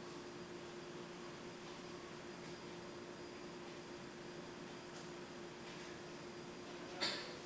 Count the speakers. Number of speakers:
0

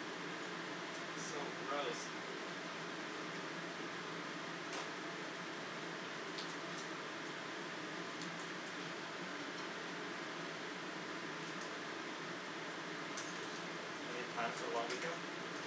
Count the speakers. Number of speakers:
1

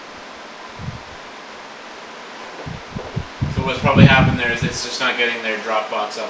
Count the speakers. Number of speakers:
1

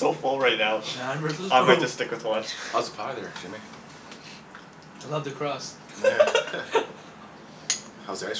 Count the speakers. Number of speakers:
3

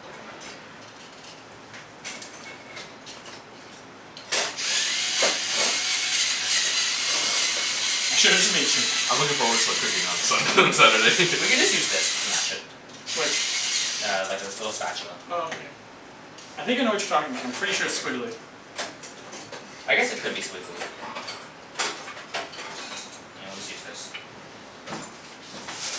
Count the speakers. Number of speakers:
3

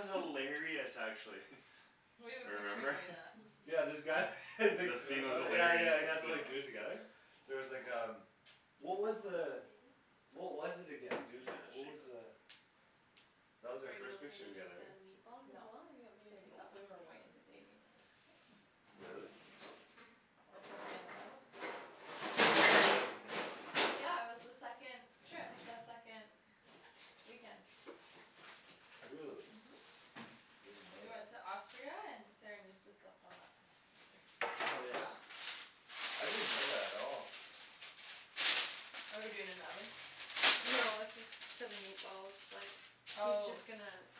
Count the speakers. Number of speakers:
4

